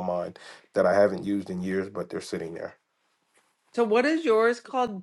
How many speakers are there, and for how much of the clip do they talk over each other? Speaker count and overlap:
2, no overlap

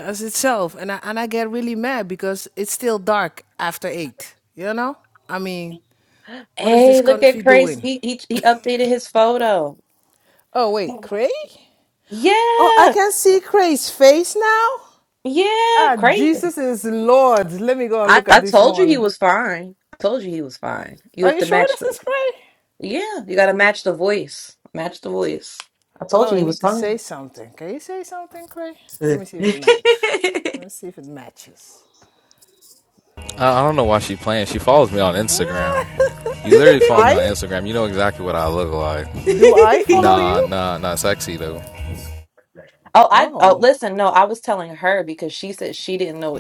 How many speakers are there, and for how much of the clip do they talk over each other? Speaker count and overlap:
3, about 13%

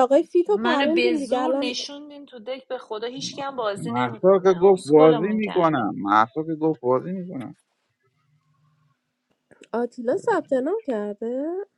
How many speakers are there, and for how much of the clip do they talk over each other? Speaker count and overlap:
3, about 32%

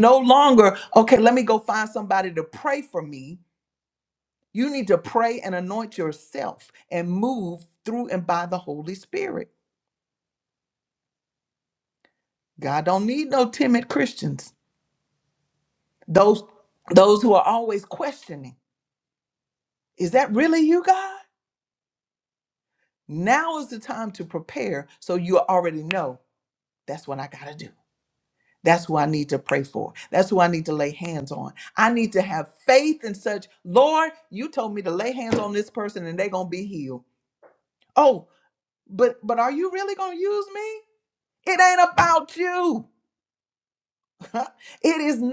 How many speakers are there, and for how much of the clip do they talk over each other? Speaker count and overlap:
1, no overlap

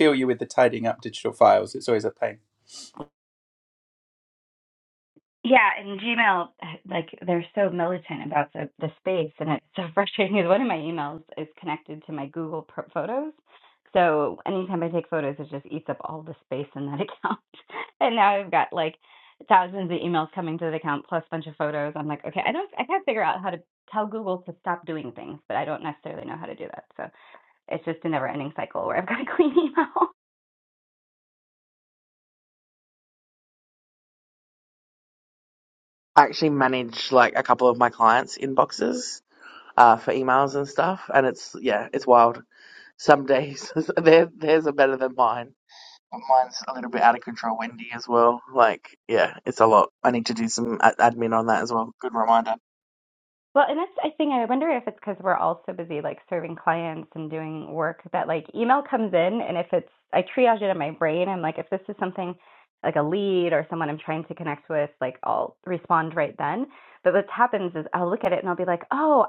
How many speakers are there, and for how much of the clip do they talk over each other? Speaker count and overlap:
3, no overlap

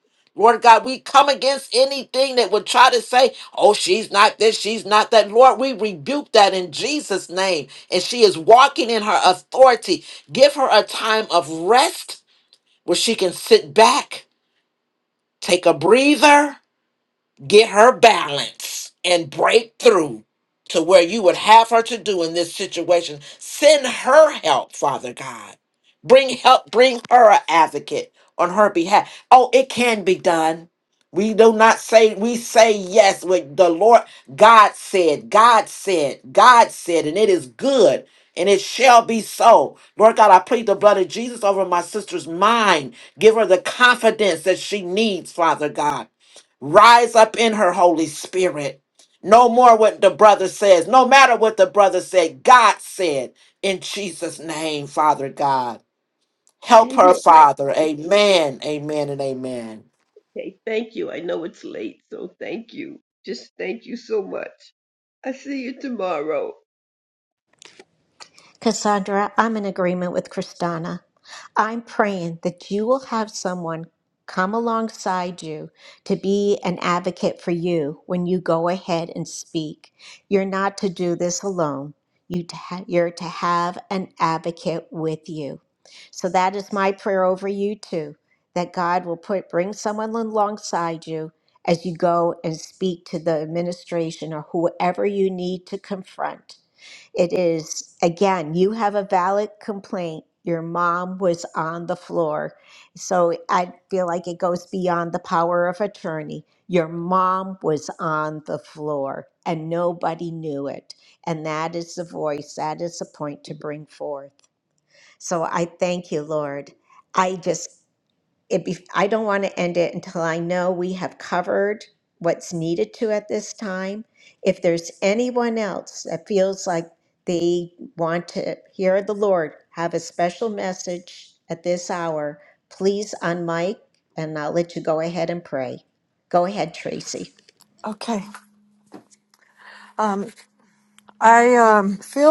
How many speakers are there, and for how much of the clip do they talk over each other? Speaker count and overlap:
4, about 1%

